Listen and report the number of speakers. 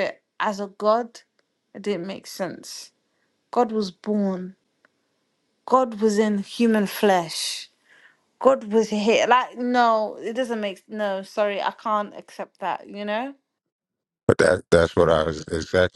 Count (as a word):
two